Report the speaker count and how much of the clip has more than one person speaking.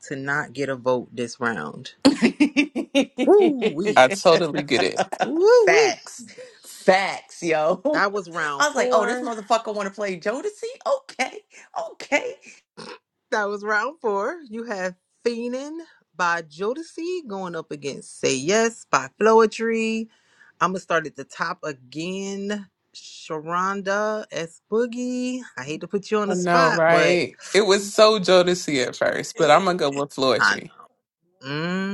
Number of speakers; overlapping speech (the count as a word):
three, about 9%